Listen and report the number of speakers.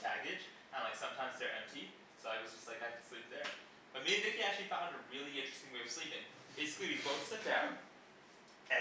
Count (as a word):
one